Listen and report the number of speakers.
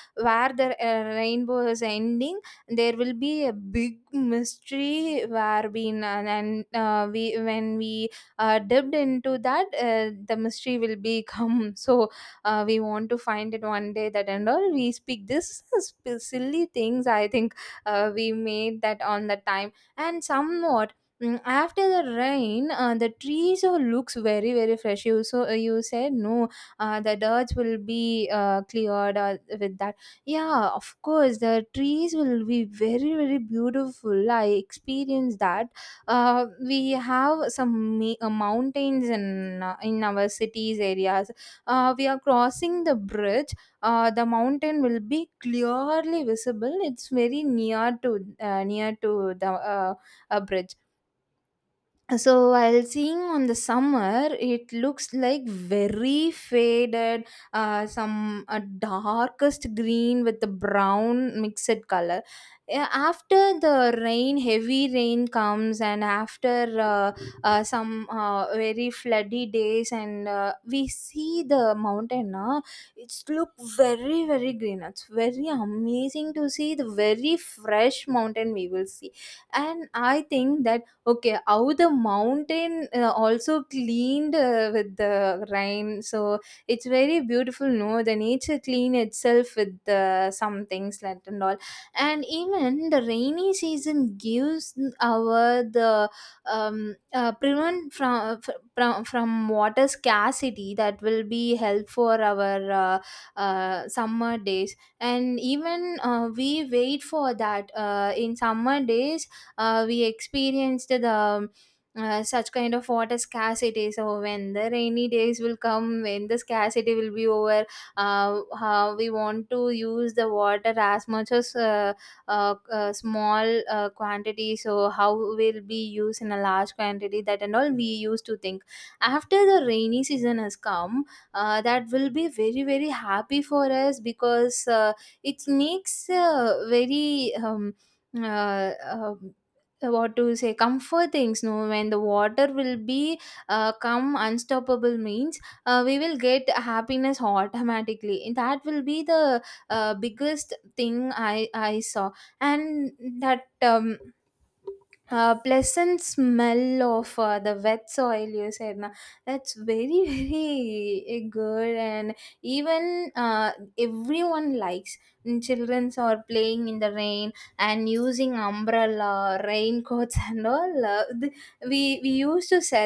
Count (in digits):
1